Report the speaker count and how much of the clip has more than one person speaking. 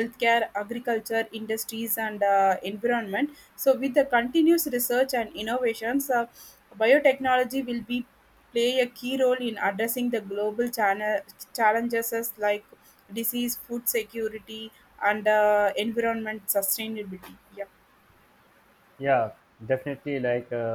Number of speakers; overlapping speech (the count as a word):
two, no overlap